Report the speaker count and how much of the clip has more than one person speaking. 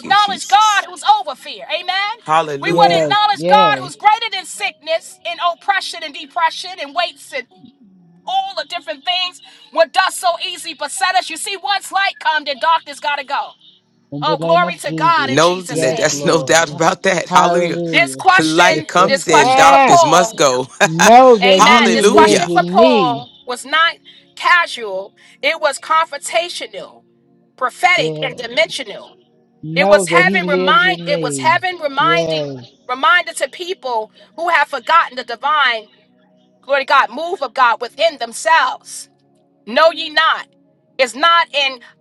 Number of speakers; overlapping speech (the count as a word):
three, about 28%